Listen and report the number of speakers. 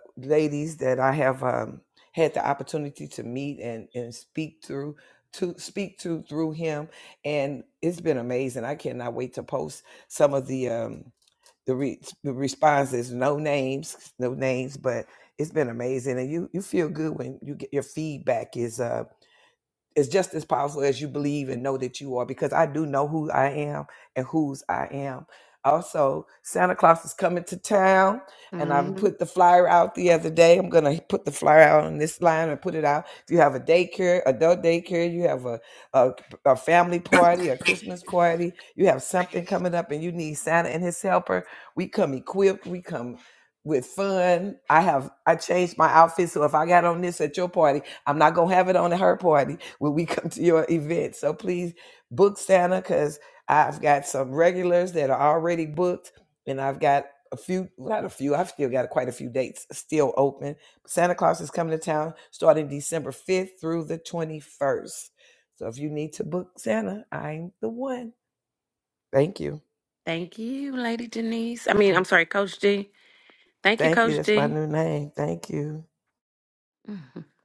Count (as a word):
two